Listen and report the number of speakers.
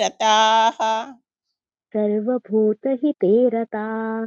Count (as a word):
two